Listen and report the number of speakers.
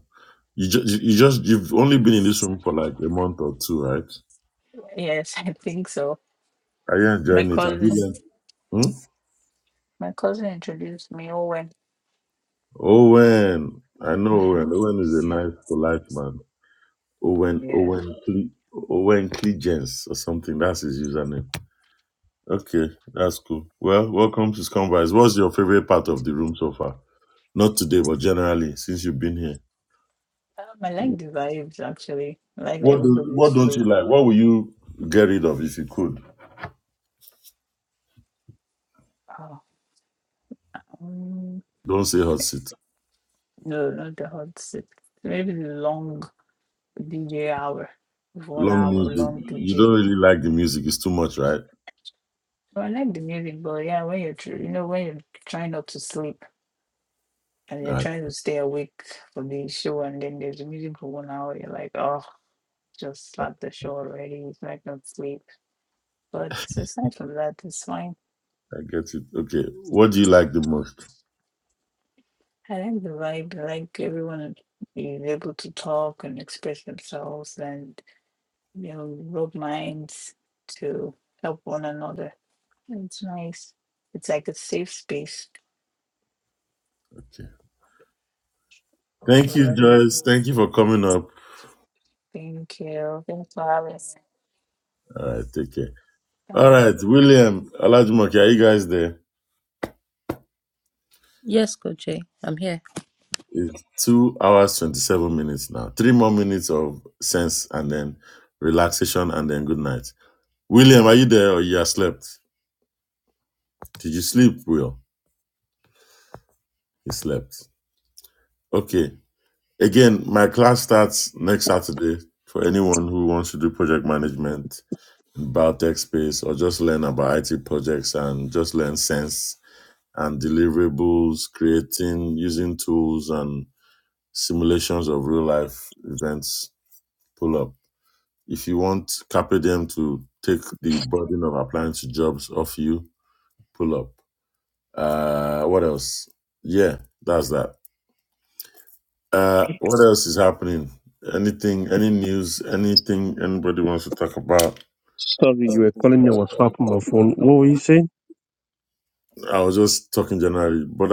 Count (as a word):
four